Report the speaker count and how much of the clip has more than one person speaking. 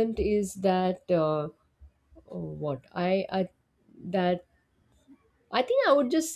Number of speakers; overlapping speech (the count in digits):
1, no overlap